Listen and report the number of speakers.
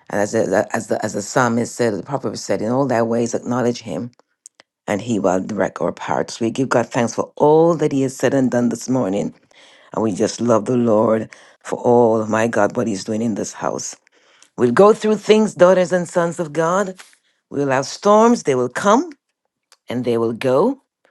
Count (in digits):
1